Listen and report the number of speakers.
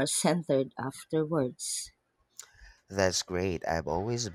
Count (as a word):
two